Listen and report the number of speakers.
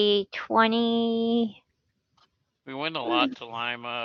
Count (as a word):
two